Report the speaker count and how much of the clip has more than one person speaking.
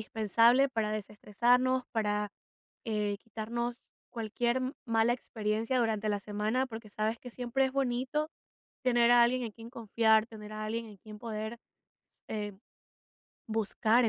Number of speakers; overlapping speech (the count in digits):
1, no overlap